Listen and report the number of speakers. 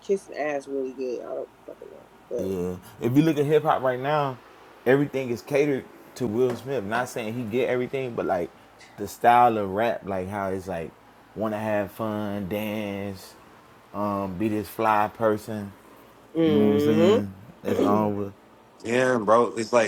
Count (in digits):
3